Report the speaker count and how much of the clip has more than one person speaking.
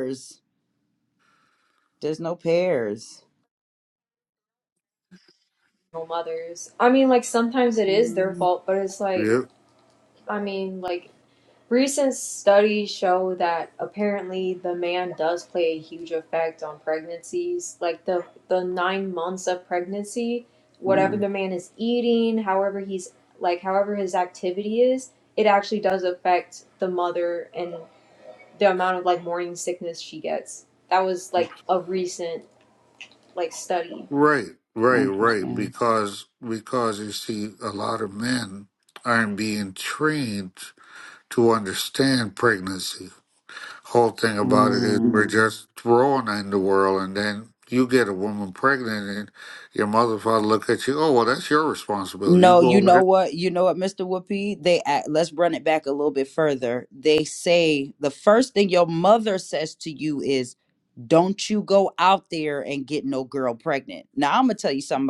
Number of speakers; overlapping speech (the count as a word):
three, about 5%